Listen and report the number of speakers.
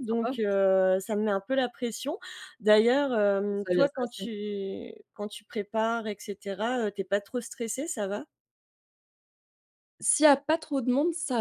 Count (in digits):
2